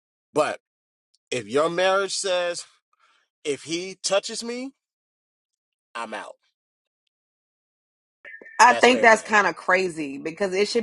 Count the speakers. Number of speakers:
two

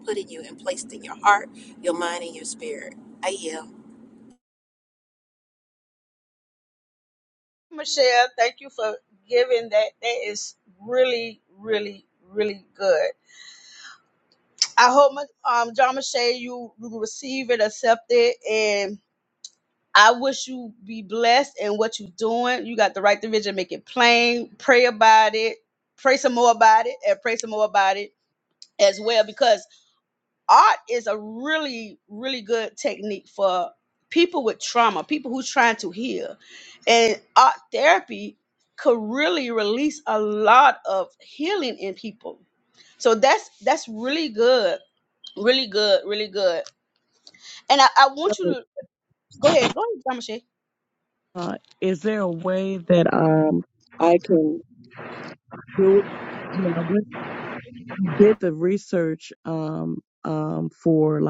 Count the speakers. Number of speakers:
three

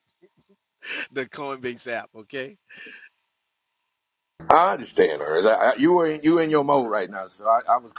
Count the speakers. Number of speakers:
two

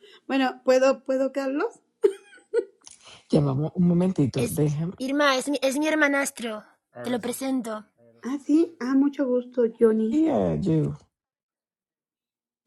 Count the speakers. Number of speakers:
three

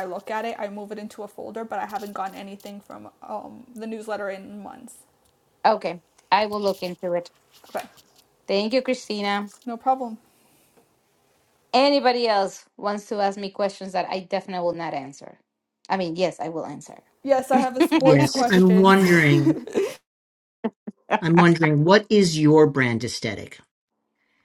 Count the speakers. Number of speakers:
three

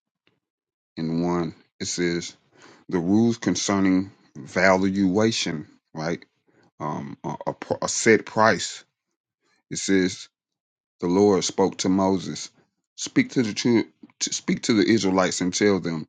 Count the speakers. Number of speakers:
one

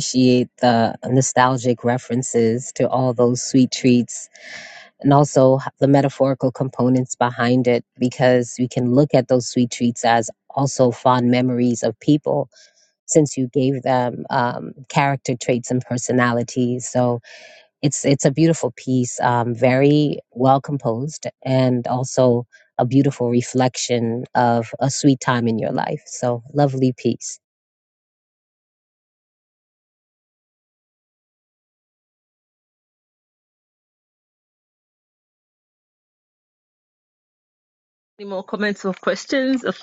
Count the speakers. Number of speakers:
two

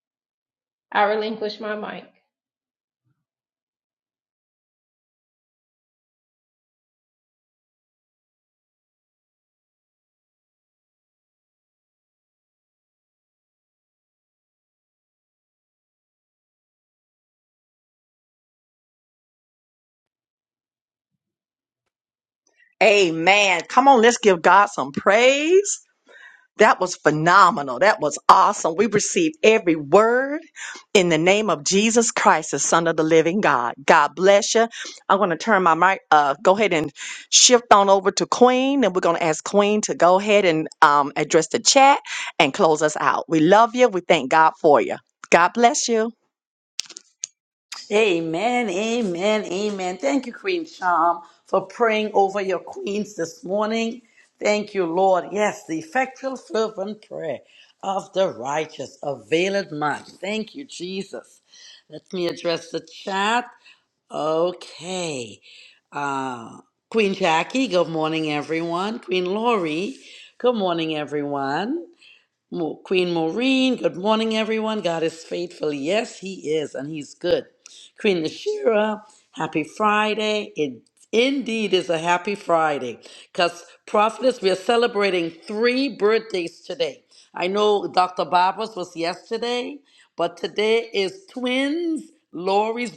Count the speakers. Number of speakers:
three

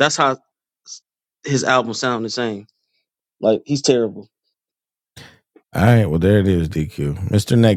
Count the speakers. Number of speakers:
two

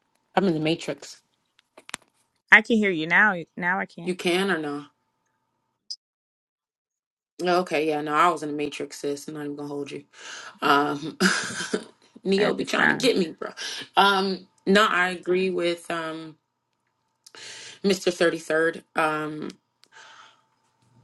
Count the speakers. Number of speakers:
two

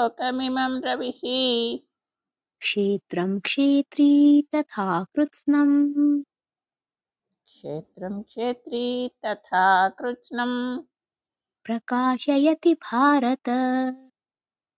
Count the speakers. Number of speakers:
two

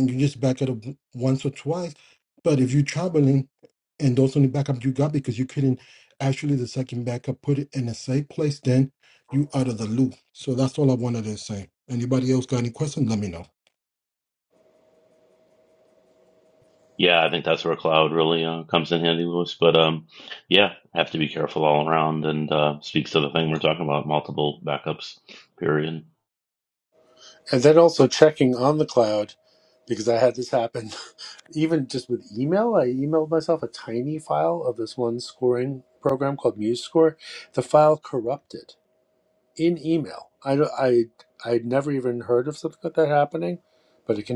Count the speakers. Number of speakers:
three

